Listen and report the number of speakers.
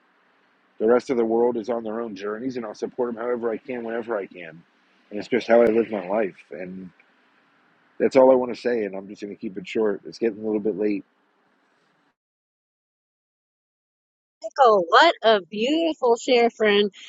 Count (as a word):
two